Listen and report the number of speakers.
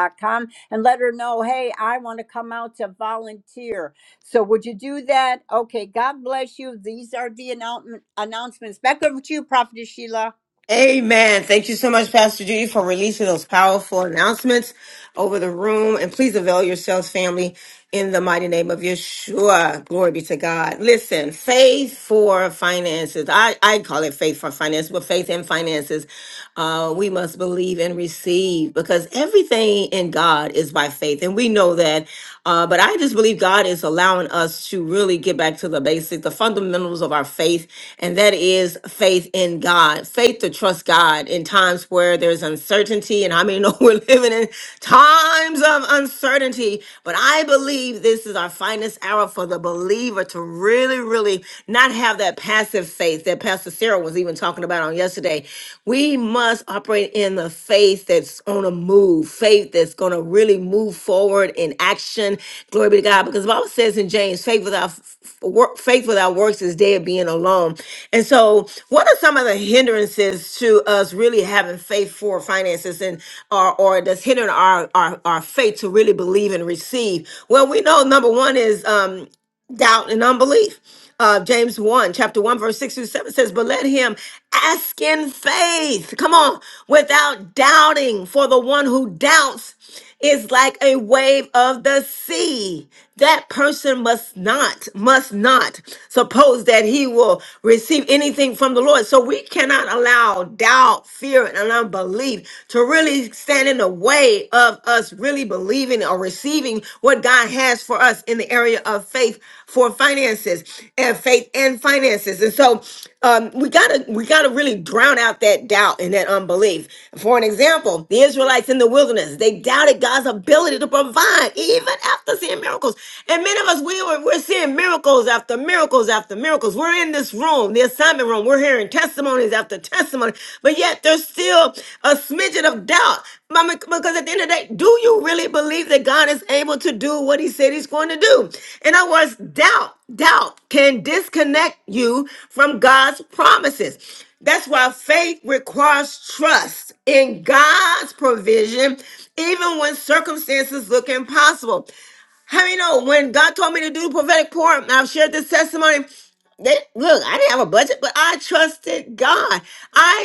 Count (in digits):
2